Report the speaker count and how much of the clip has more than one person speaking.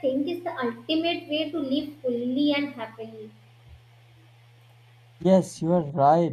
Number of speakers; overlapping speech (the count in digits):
2, no overlap